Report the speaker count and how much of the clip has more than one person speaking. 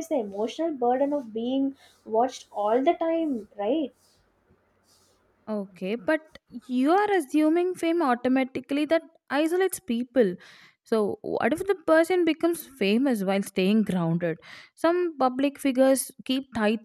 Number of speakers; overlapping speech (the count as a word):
two, no overlap